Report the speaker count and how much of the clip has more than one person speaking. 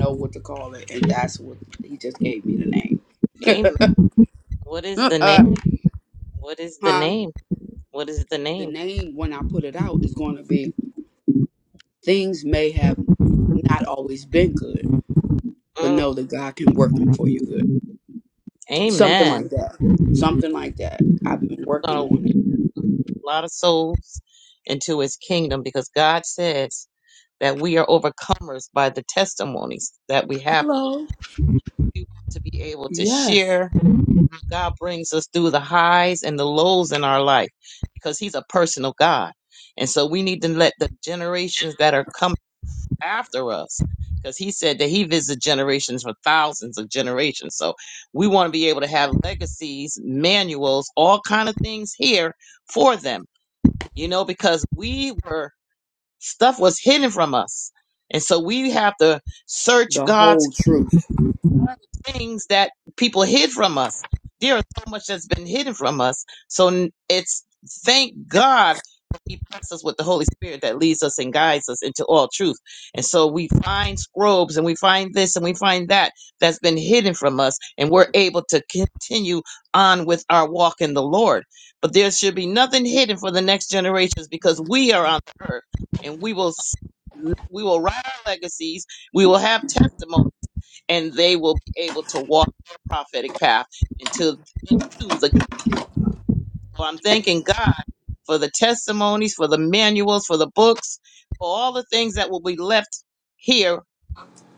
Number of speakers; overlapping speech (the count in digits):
2, about 3%